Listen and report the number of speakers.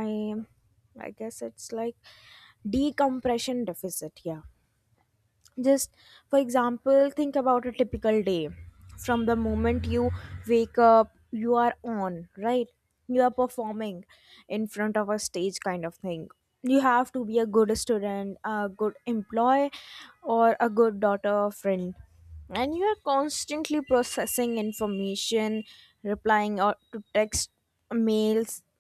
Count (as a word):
one